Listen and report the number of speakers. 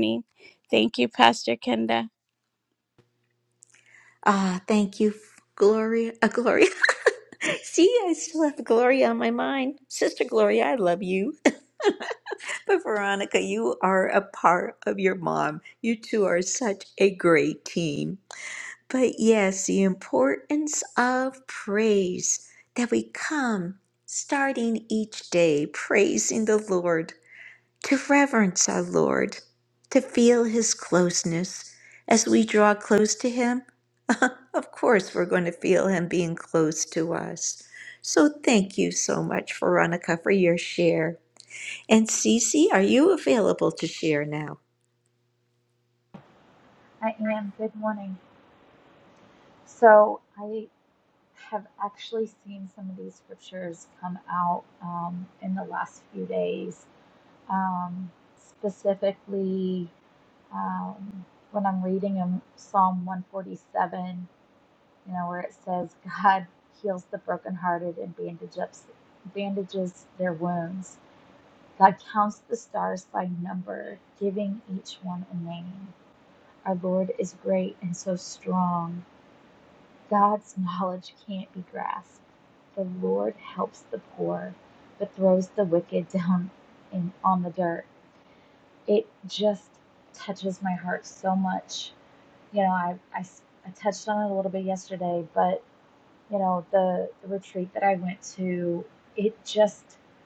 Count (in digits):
3